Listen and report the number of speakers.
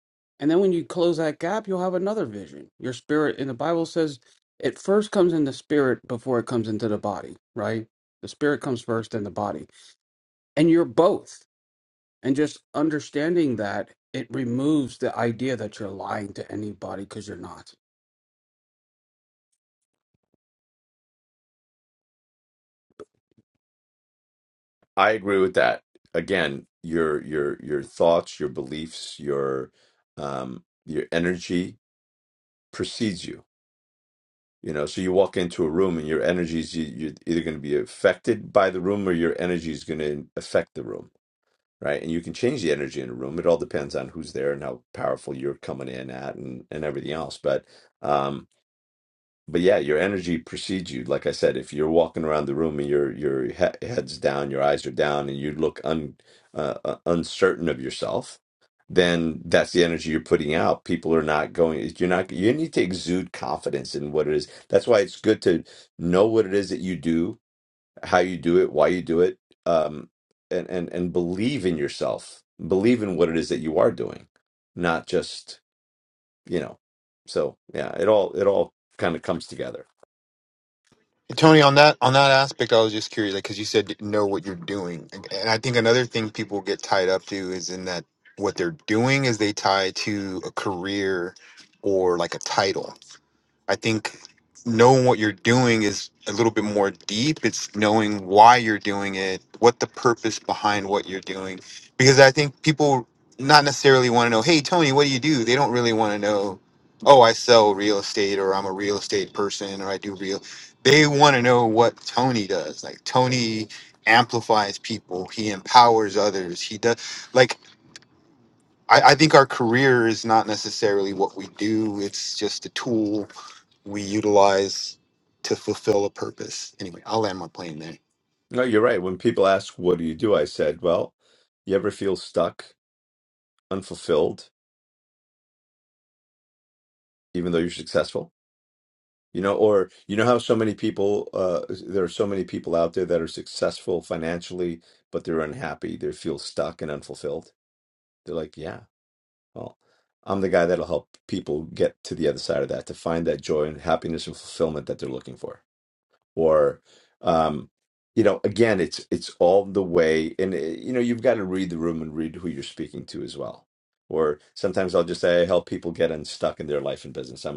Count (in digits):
3